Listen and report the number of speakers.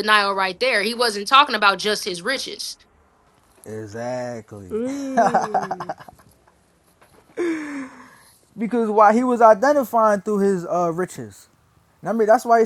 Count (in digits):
3